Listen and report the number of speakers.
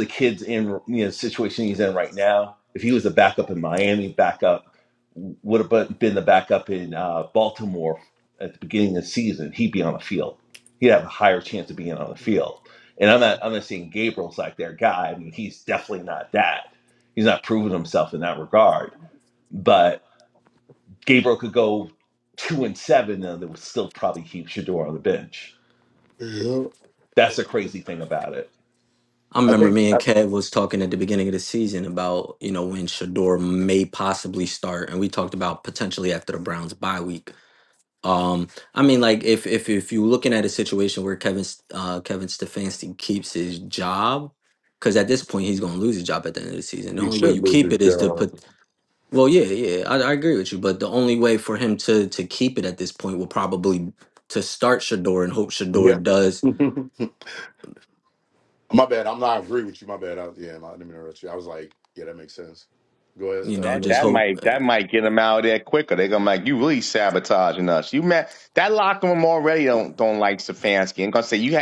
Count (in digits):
4